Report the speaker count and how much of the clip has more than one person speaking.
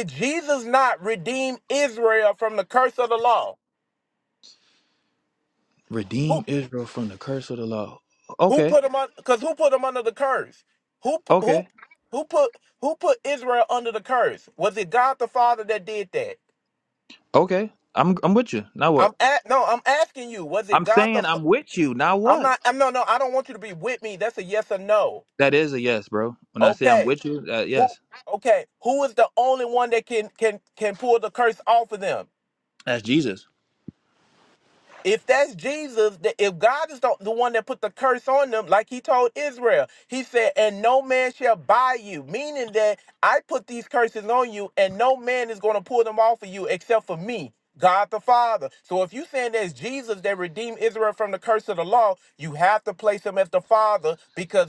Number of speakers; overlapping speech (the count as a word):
two, about 4%